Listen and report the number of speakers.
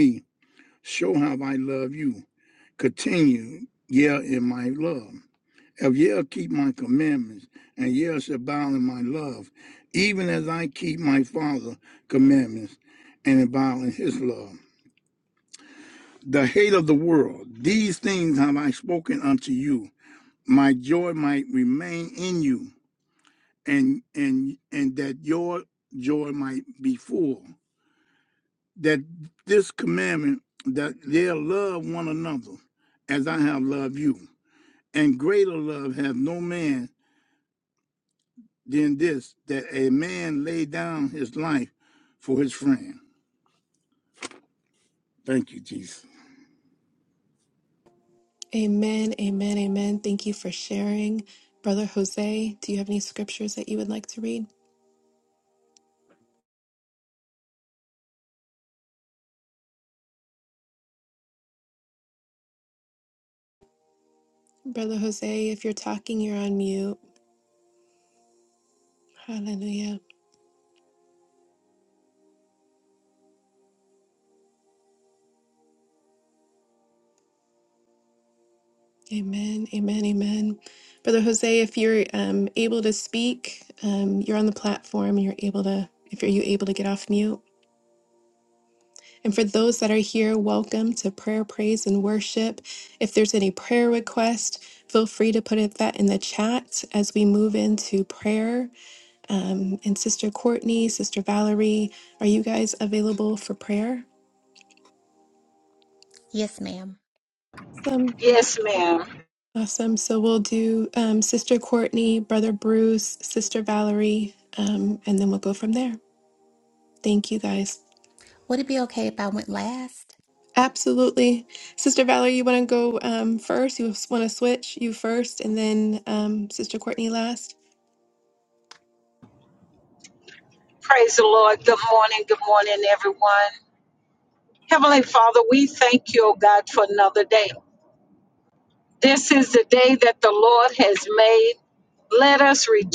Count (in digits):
4